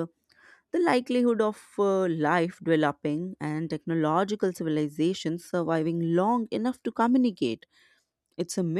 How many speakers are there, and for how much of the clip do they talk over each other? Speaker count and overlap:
1, no overlap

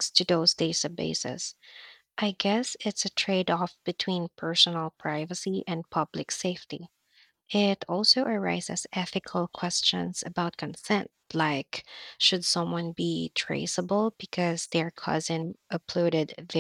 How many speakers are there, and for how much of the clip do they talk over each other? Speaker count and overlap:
1, no overlap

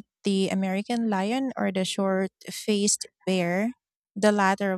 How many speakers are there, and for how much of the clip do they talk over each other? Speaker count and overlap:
1, no overlap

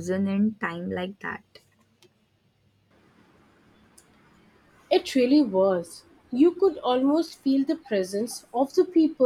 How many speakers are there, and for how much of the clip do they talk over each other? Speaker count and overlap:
2, no overlap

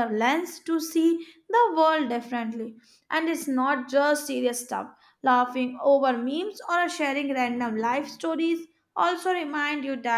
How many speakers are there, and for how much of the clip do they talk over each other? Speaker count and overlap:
1, no overlap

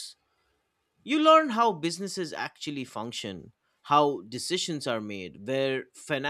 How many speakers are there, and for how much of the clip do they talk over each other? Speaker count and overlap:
1, no overlap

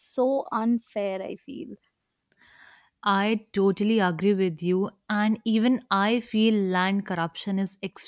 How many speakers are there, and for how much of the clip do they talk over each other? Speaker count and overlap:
2, no overlap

